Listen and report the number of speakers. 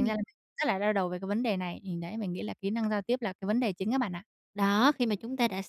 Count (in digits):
2